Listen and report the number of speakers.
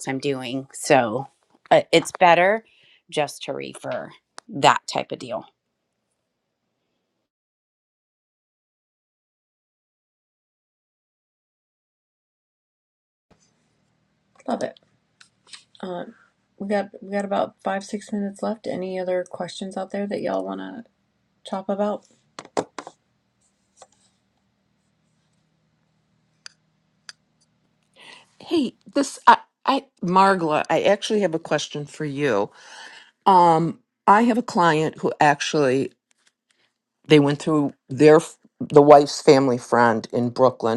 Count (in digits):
3